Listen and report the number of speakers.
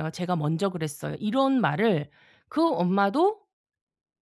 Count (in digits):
1